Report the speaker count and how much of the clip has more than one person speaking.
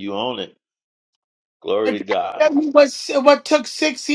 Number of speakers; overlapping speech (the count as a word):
two, about 7%